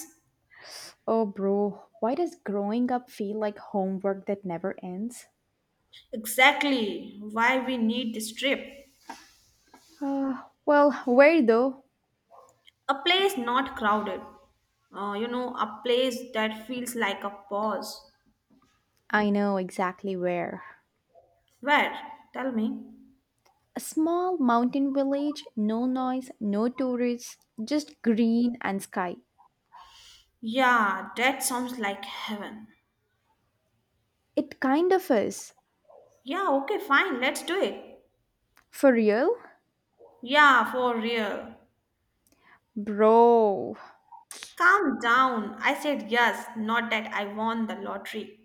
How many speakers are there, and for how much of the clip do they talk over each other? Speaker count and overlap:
2, no overlap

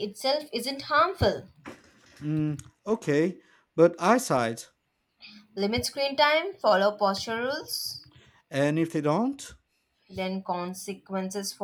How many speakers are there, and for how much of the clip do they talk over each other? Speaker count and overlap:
2, no overlap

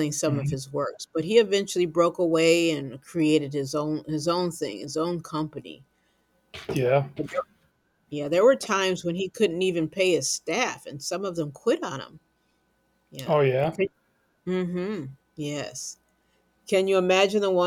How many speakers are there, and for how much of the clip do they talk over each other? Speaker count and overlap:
2, about 2%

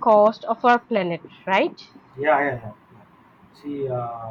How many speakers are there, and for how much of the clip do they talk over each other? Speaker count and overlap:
2, no overlap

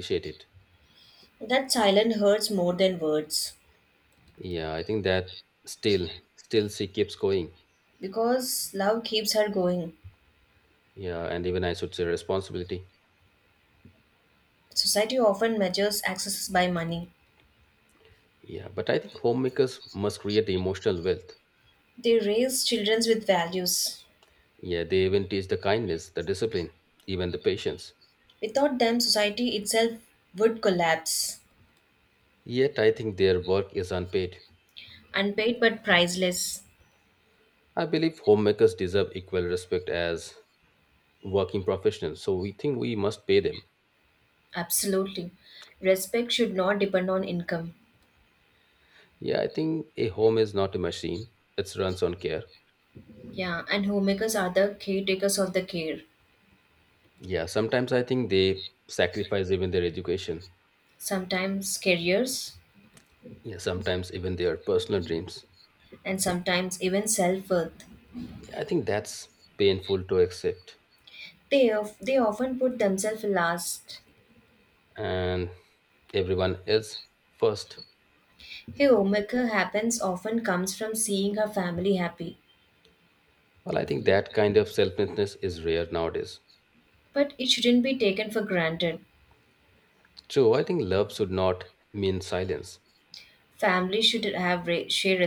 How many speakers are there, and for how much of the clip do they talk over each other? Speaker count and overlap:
2, no overlap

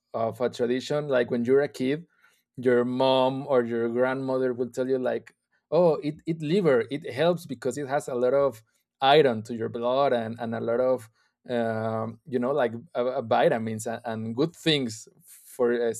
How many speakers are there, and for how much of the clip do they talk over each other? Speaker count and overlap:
1, no overlap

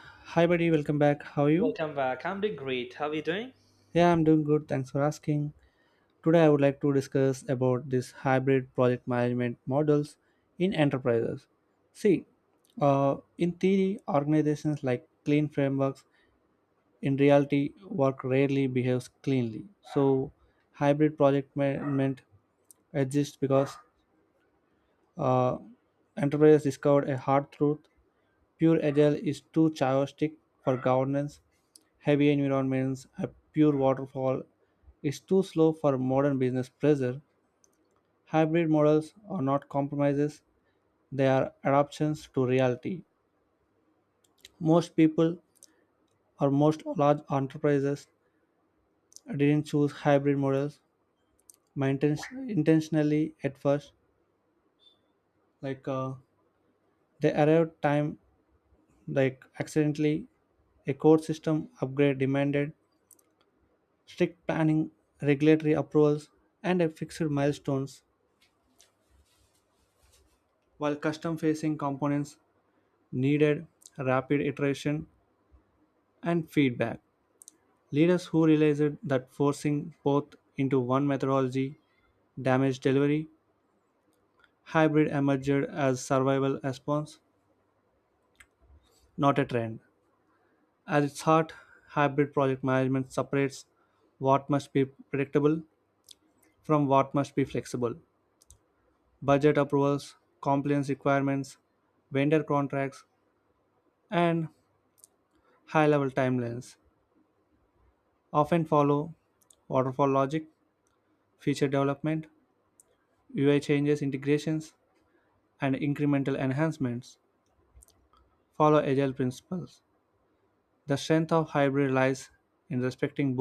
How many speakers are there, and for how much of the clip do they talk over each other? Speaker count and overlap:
2, under 1%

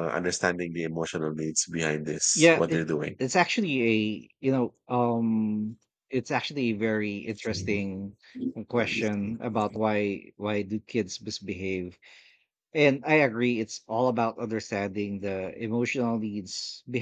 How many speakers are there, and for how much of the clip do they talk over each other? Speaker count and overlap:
2, about 3%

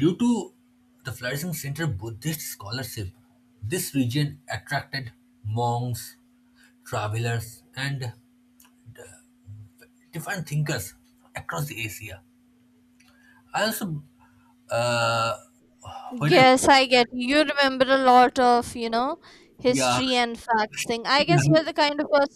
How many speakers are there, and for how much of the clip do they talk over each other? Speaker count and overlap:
2, about 5%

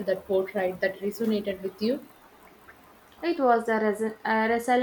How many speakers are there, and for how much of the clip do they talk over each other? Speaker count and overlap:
2, no overlap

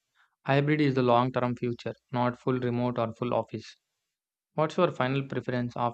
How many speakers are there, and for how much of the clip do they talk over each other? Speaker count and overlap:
1, no overlap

